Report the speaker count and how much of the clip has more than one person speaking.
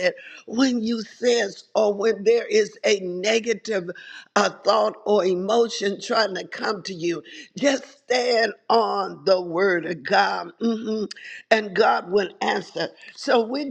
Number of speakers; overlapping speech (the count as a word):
one, no overlap